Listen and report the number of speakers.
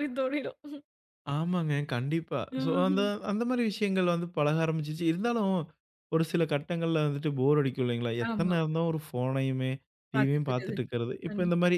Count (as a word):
two